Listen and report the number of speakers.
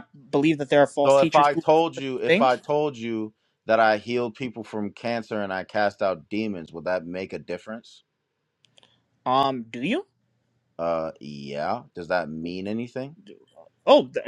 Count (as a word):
two